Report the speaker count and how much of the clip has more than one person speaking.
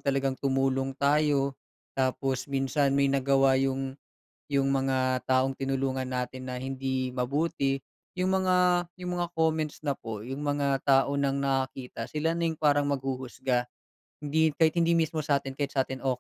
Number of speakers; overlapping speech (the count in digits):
1, no overlap